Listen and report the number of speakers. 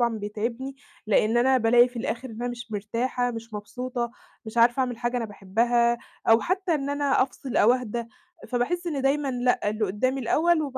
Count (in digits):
1